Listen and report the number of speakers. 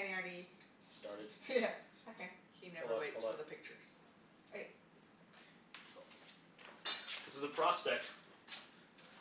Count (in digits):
3